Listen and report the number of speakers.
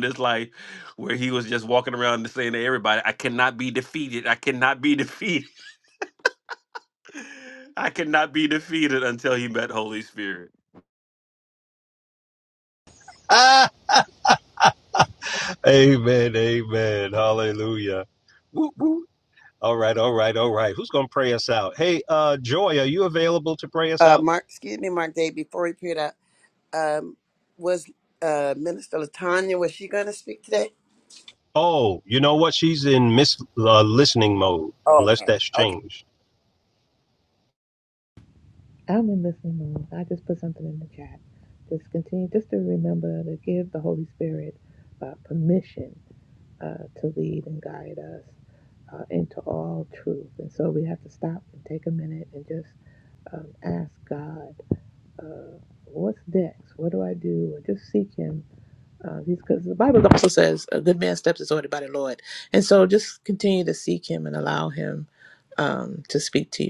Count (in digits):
4